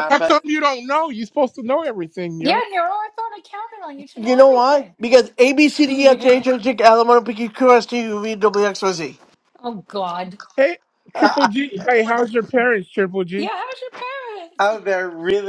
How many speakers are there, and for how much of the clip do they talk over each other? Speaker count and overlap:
four, about 14%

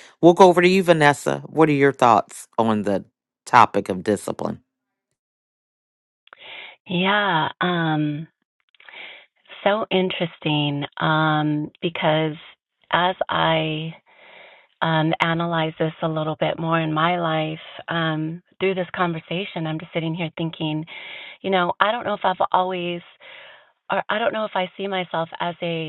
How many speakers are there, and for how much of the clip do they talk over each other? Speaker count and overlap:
two, no overlap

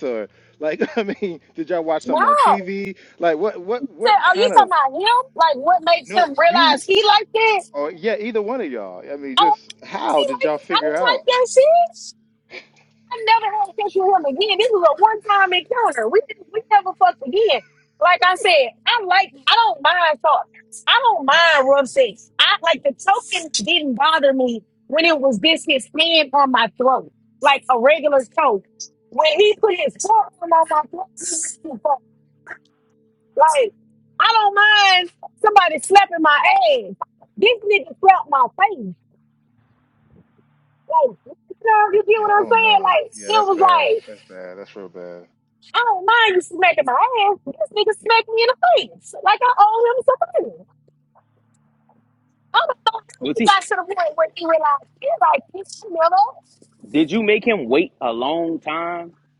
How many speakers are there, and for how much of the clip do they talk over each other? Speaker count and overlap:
three, about 9%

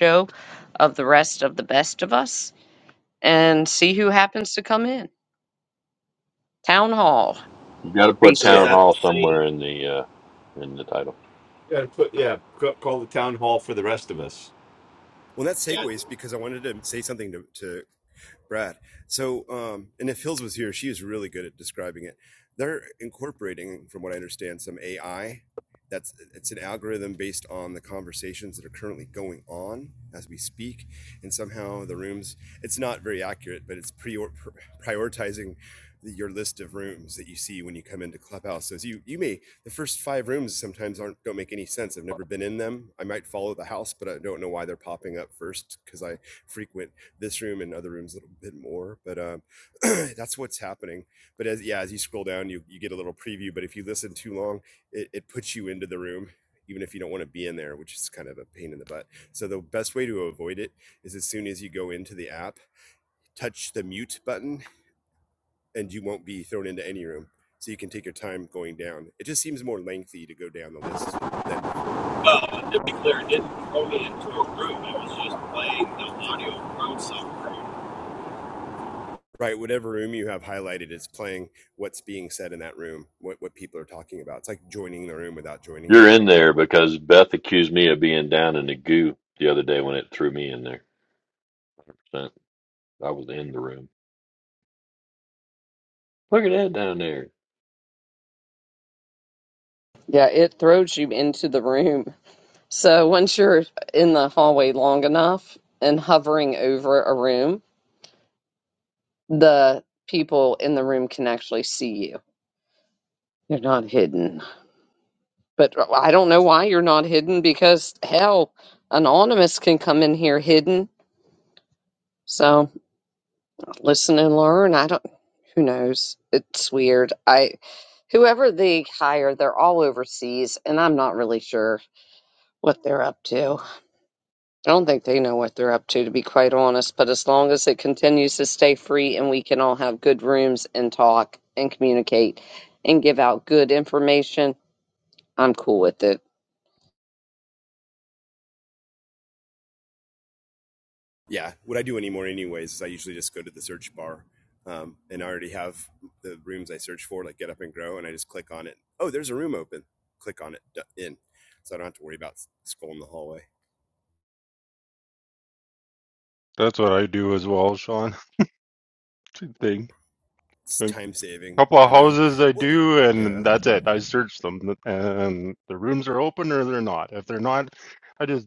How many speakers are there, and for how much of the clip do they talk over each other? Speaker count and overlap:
six, about 2%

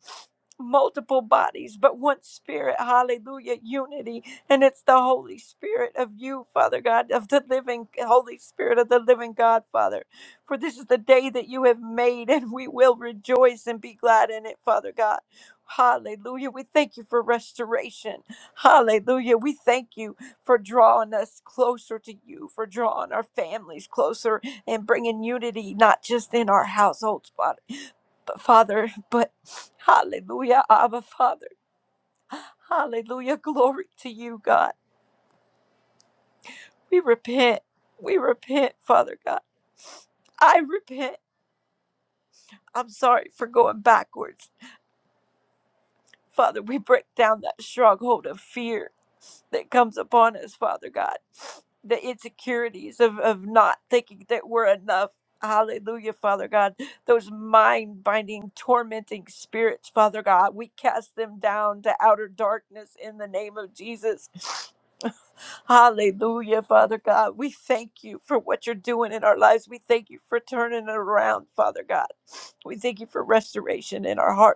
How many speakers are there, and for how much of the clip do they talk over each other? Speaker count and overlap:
one, no overlap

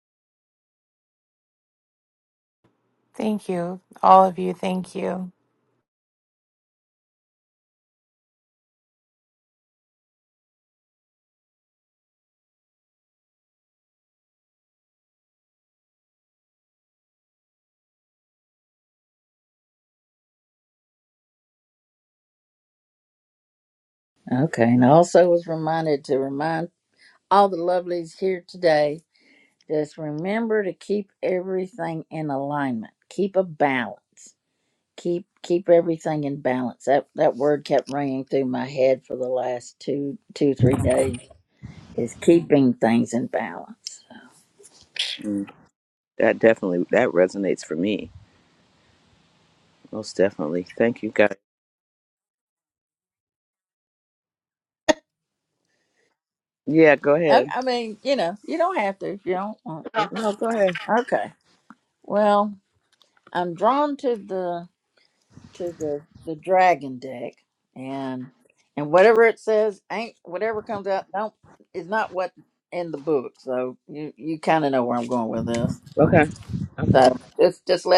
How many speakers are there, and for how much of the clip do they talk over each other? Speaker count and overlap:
three, about 1%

